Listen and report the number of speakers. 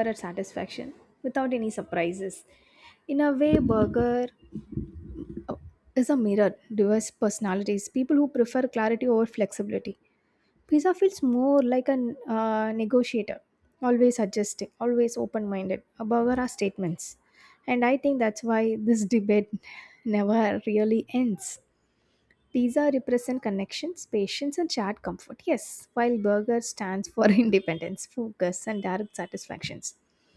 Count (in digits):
1